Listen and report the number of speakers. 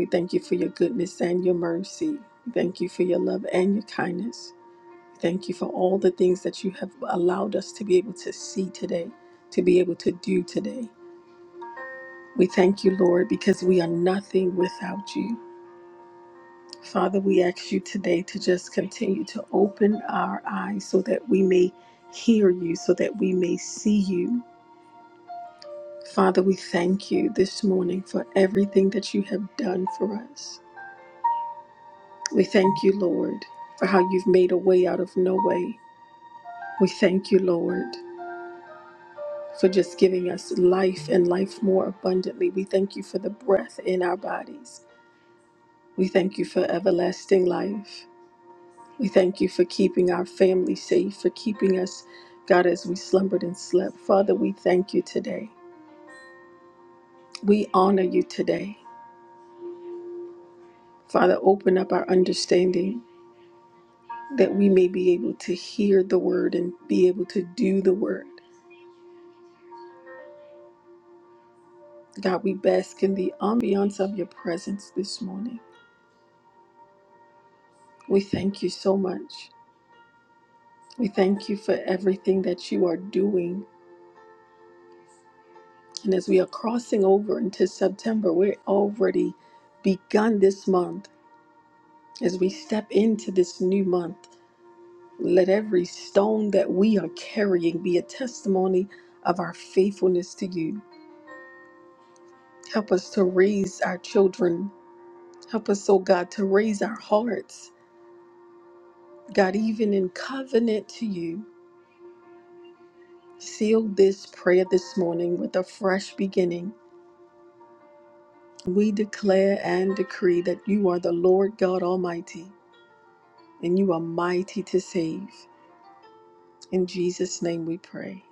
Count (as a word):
one